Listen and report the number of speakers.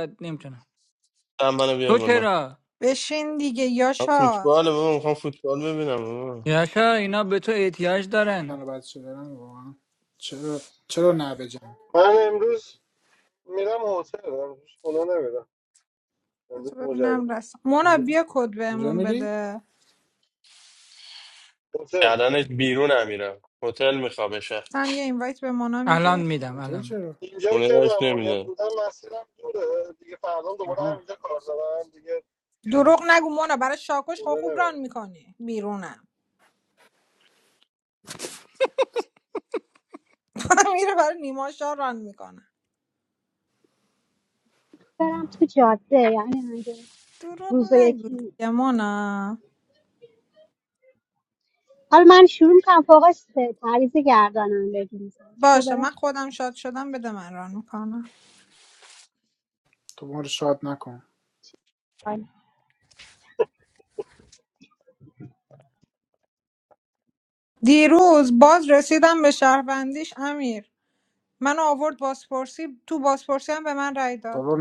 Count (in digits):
6